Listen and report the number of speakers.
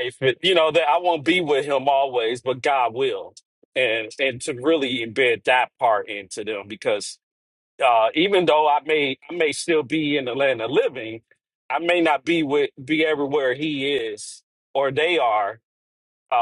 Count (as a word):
one